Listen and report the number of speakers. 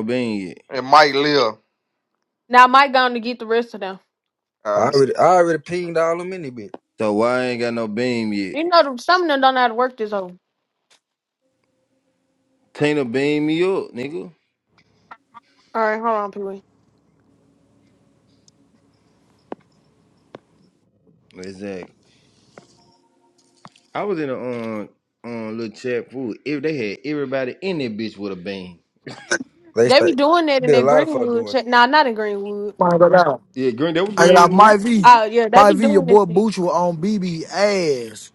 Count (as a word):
five